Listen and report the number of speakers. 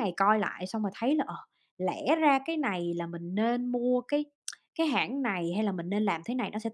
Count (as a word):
one